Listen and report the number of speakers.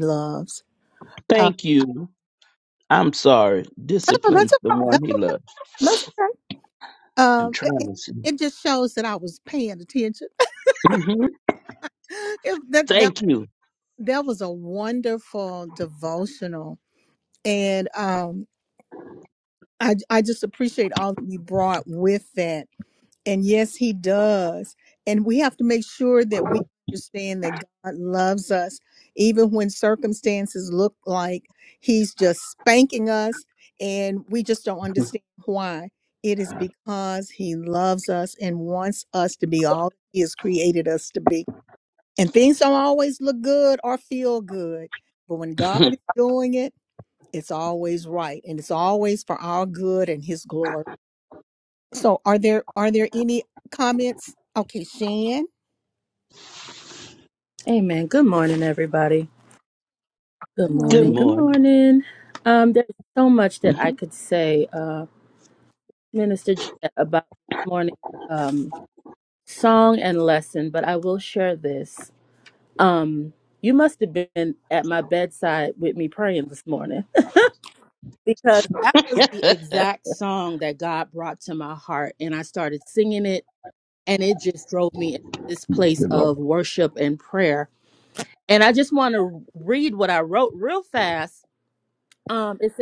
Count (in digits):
3